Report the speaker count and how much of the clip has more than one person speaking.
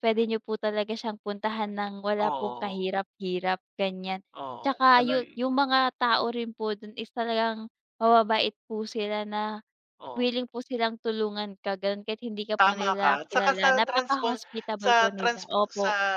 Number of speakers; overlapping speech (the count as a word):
two, about 27%